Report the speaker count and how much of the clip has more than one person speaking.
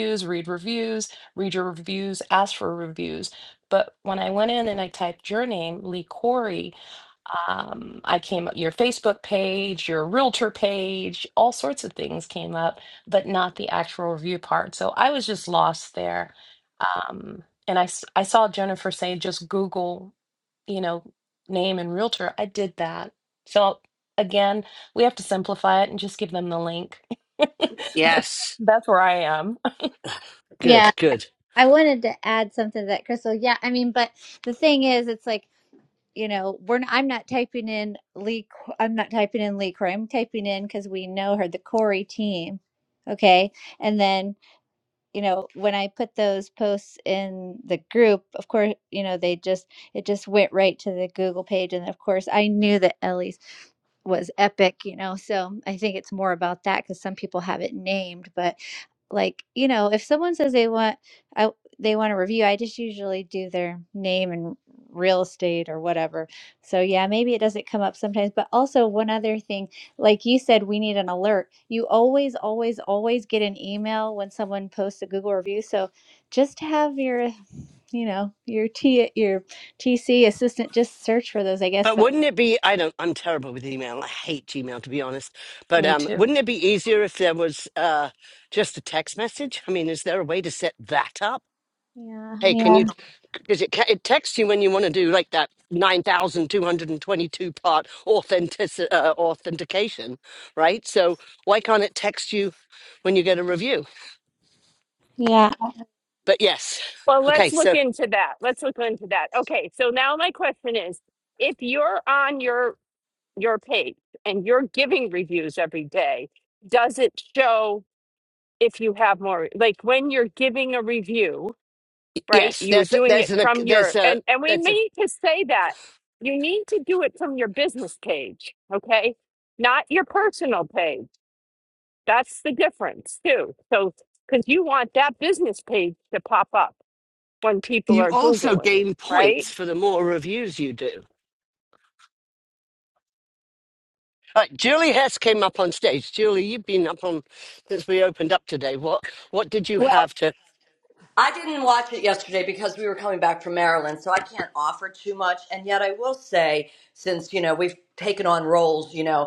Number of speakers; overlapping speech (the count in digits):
5, about 4%